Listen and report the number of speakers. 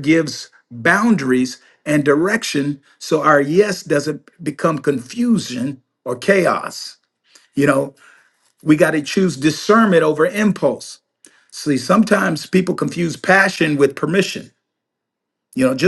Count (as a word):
one